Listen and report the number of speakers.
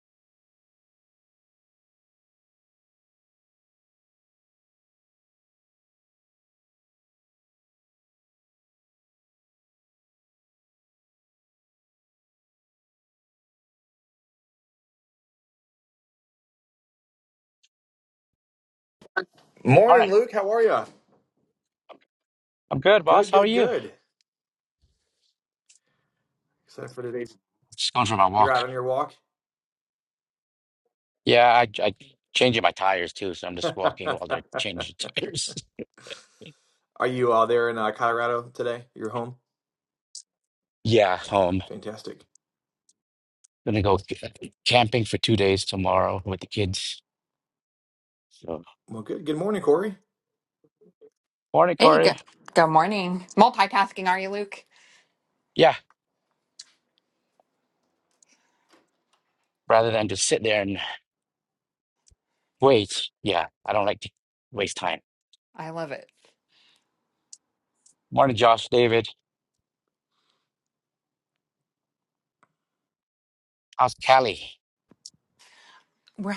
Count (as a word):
three